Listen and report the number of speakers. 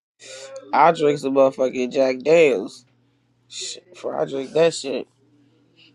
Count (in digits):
1